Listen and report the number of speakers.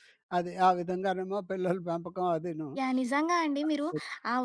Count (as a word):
two